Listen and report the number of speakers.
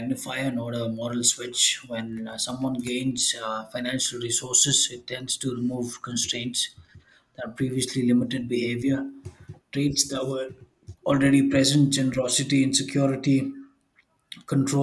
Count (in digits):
1